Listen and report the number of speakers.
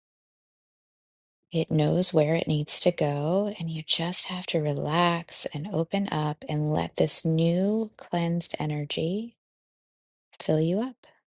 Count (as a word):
one